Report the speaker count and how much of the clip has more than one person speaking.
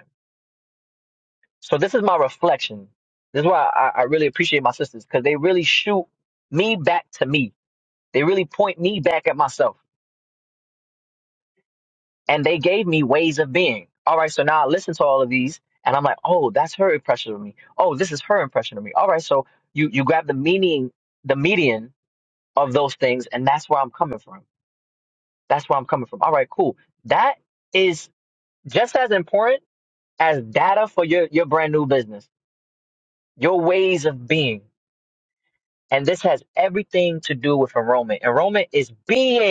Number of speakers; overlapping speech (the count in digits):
1, no overlap